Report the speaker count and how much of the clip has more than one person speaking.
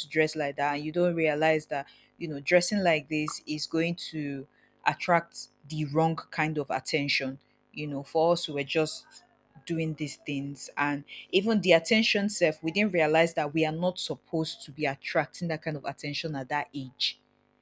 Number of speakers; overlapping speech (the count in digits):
1, no overlap